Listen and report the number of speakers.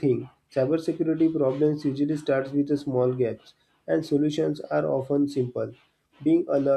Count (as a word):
one